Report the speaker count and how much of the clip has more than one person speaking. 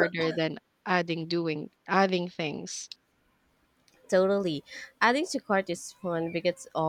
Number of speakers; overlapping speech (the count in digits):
2, no overlap